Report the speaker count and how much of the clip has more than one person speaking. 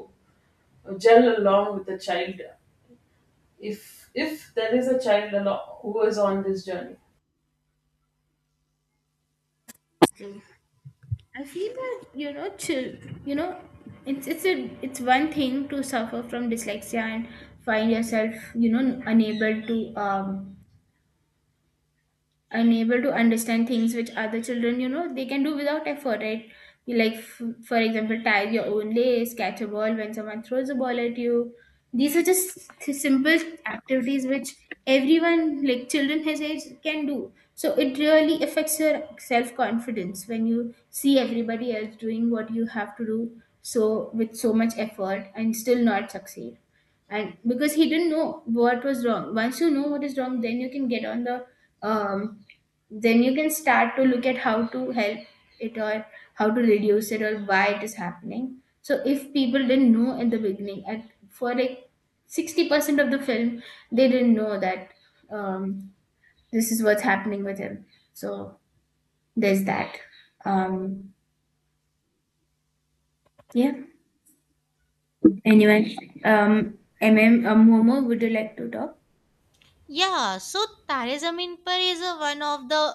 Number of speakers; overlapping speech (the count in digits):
3, no overlap